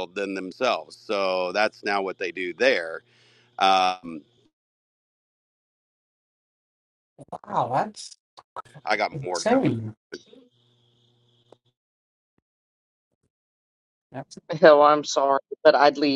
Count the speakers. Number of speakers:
three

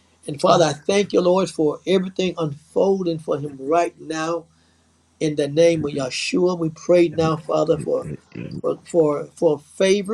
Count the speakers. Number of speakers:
one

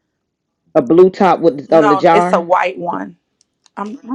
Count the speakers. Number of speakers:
two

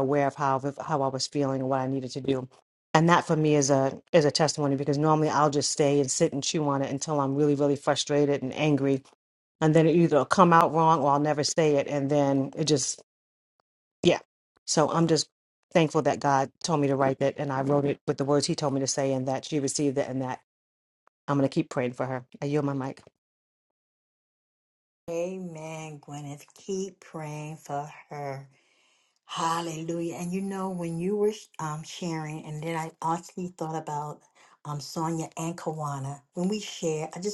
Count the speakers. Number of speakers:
two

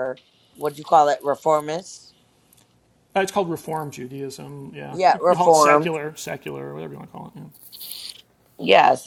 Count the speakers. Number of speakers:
two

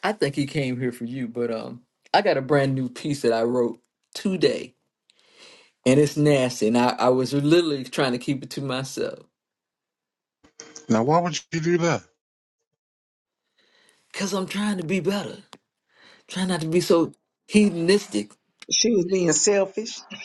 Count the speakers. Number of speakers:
three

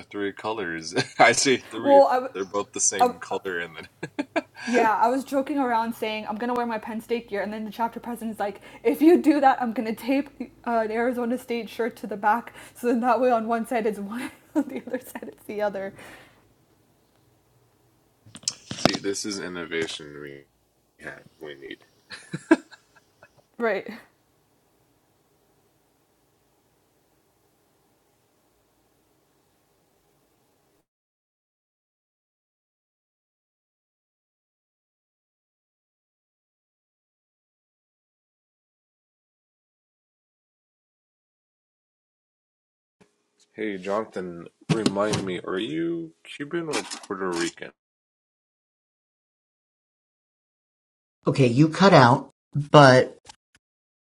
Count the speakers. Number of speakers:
three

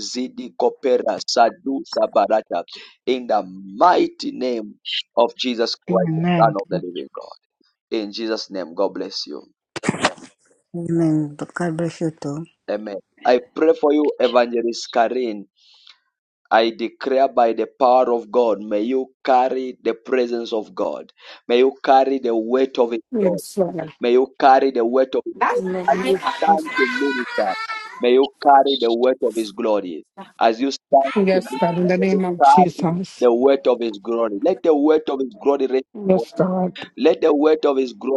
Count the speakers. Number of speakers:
three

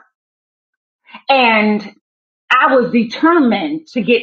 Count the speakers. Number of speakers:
one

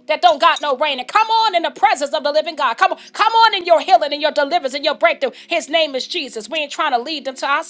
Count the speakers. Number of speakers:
one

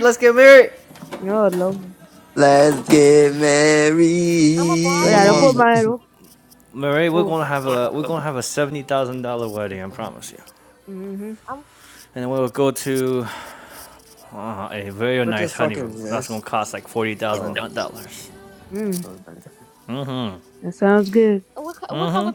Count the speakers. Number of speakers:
four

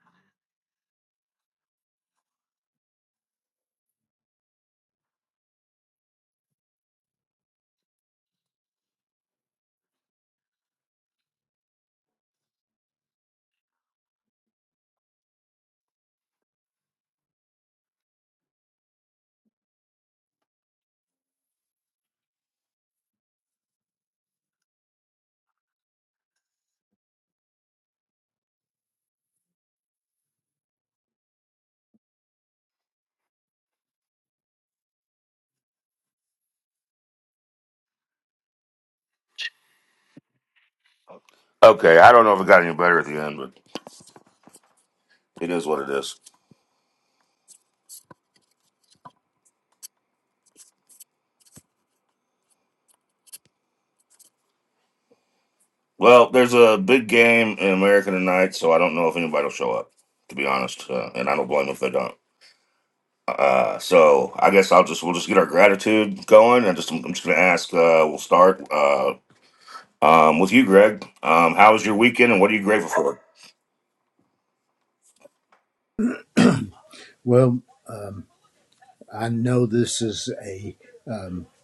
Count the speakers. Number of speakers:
two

